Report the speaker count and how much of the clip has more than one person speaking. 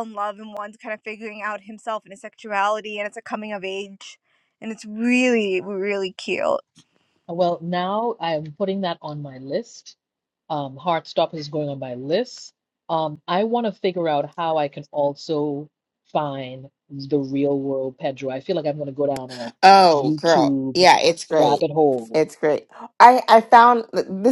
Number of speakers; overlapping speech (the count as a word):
three, about 5%